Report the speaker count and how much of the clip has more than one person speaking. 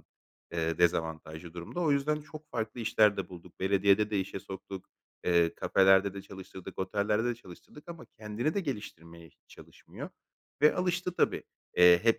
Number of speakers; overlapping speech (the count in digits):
1, no overlap